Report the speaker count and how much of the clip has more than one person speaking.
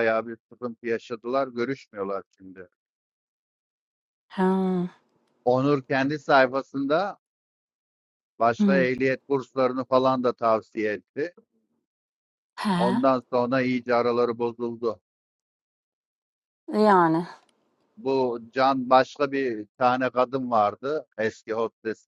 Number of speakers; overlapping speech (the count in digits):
2, about 1%